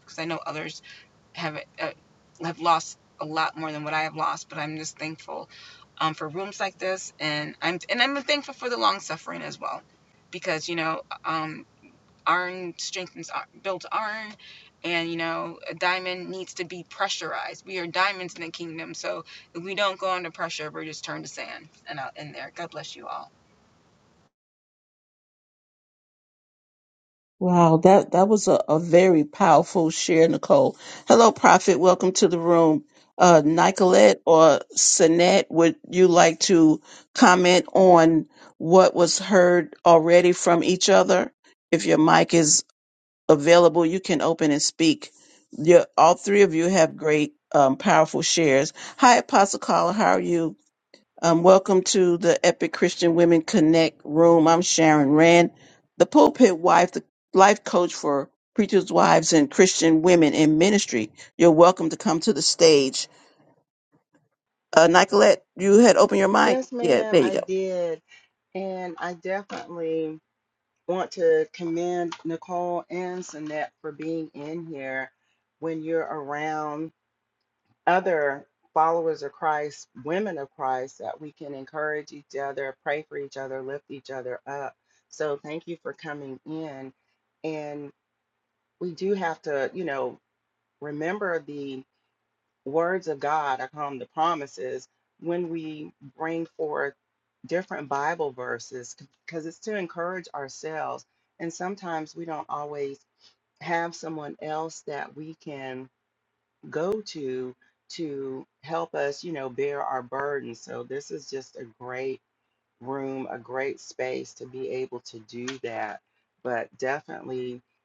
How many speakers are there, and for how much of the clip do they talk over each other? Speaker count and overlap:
3, about 1%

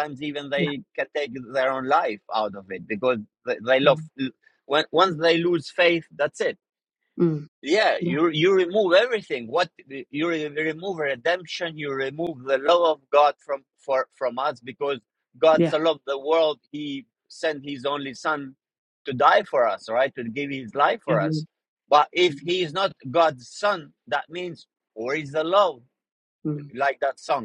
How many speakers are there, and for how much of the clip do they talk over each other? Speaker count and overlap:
2, about 4%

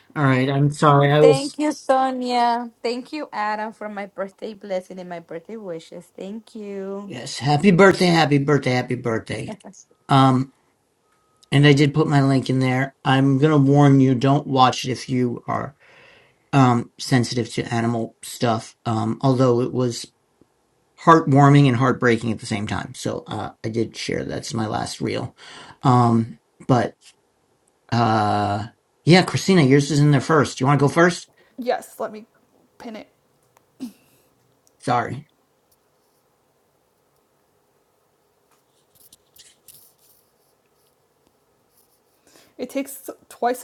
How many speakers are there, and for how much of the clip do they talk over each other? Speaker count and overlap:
3, under 1%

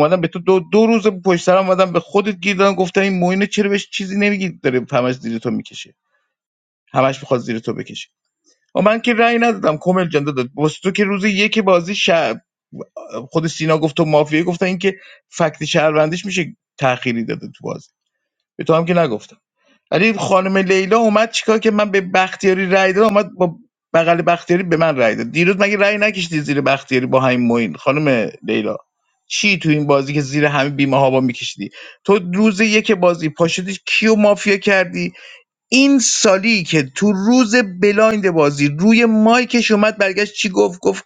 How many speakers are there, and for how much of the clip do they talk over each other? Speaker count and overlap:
1, no overlap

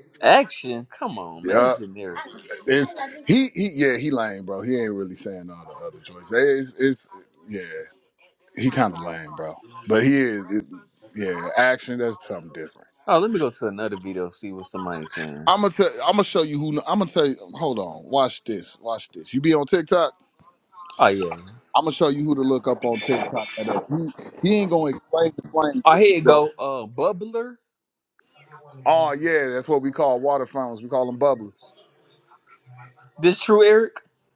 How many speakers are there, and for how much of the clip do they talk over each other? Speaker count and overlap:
2, about 3%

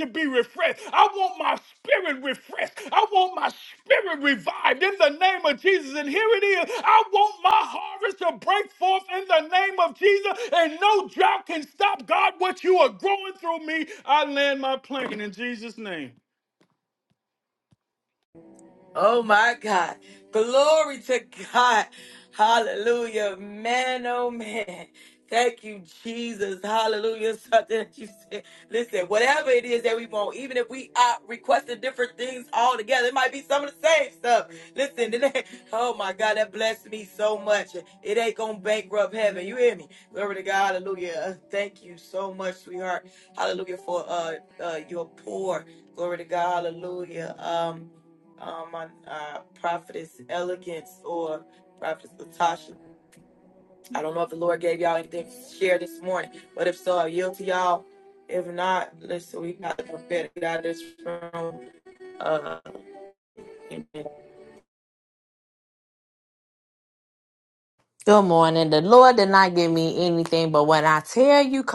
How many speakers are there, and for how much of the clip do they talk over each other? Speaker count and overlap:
3, no overlap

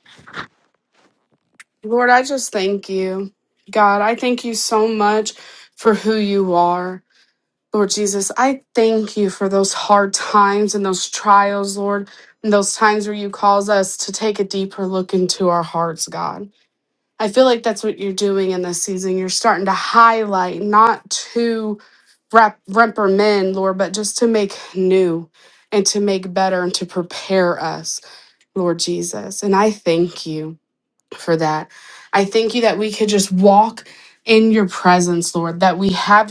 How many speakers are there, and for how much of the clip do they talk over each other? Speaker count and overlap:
1, no overlap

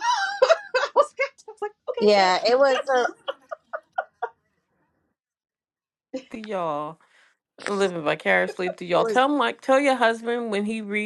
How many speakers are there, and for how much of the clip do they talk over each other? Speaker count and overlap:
3, about 5%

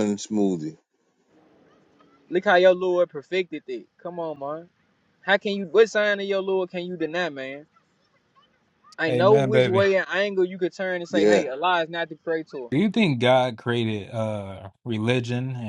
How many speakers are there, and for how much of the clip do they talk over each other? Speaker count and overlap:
3, about 7%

